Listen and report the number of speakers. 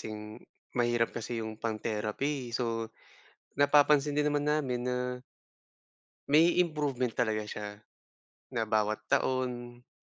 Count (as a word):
one